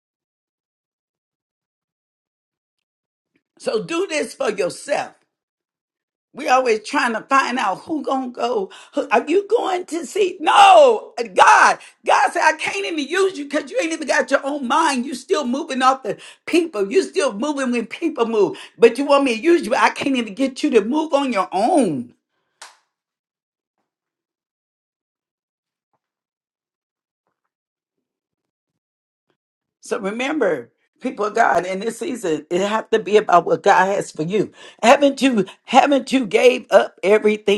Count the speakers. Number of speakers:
one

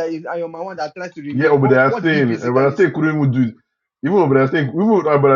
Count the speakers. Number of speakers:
two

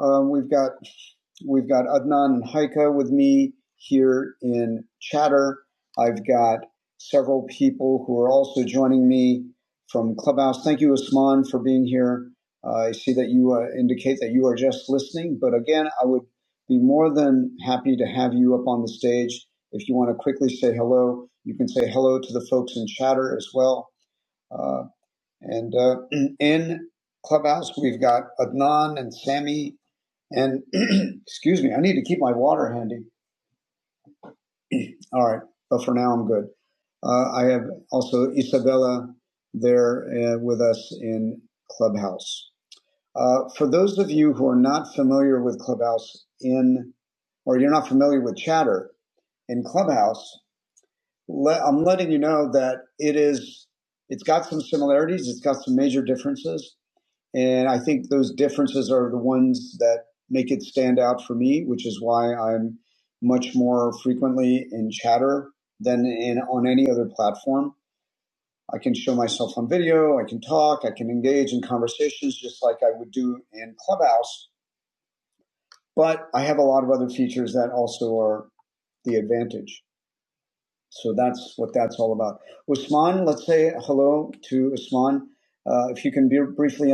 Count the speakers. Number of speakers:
one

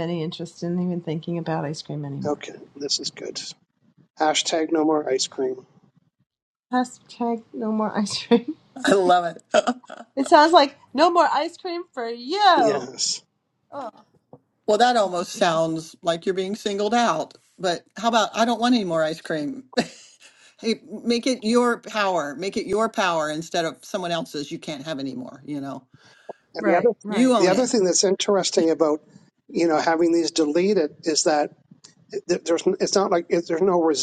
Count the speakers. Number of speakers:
three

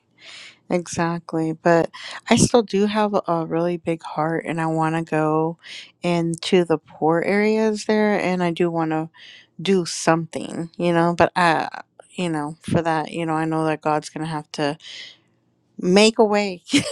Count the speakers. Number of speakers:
one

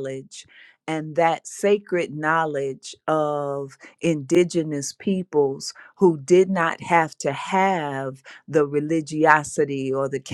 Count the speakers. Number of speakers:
one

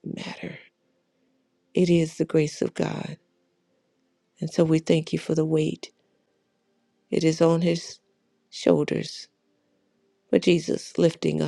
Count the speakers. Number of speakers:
one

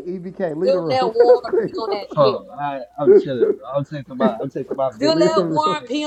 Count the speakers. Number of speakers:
three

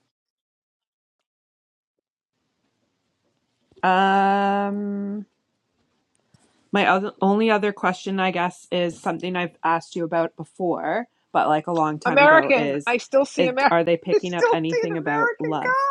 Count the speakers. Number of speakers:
two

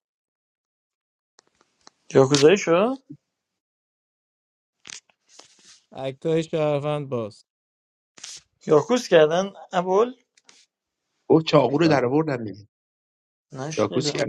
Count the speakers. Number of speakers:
three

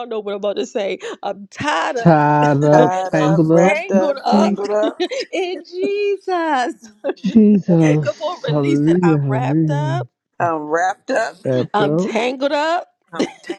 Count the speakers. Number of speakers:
three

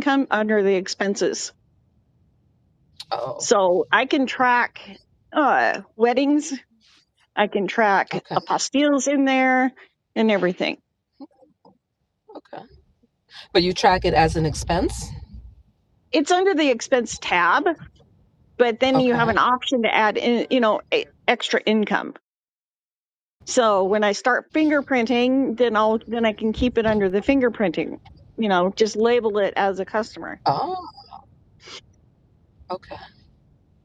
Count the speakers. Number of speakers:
two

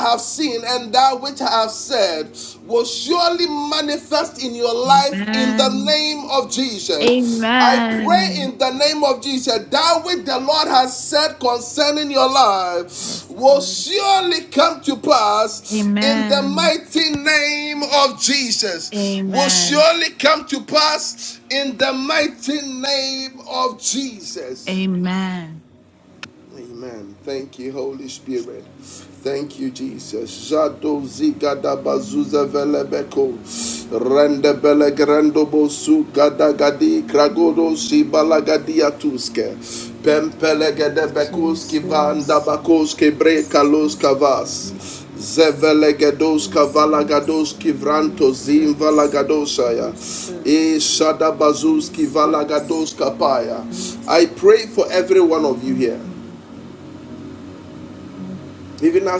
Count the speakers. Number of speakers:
three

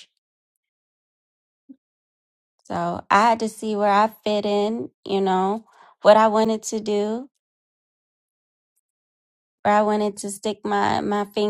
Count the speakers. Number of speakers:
one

